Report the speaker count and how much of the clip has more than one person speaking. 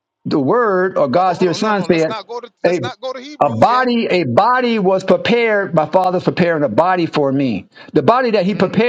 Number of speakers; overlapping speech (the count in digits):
2, about 23%